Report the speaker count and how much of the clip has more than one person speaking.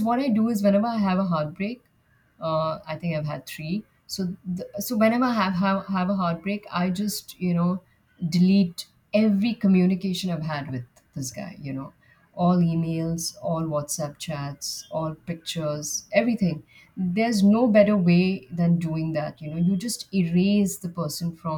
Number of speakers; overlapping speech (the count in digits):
1, no overlap